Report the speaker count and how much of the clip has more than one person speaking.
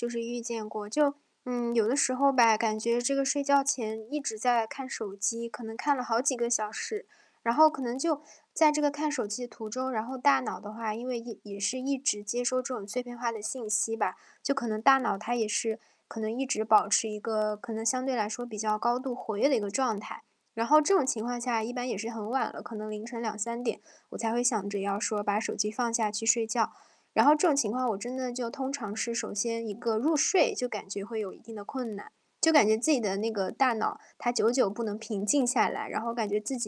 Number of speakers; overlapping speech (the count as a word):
one, no overlap